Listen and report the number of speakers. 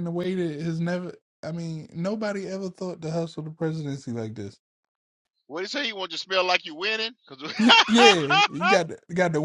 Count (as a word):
two